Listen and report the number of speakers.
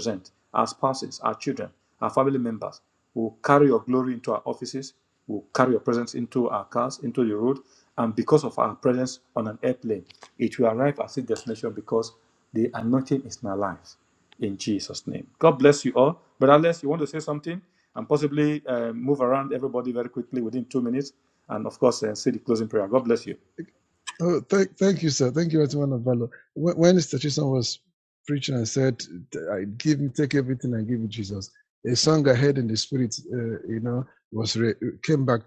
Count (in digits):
2